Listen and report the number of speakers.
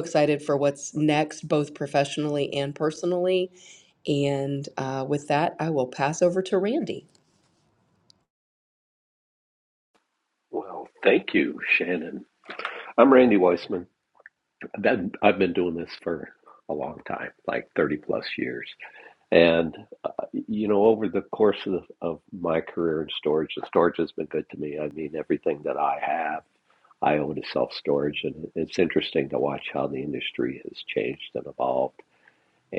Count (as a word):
two